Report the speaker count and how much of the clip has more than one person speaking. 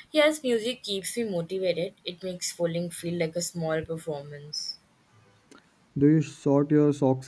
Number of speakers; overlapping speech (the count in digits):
2, no overlap